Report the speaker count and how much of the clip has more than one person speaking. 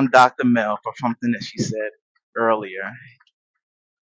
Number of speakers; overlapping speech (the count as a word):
one, no overlap